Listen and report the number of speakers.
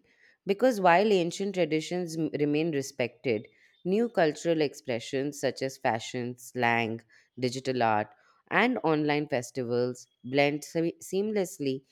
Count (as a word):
one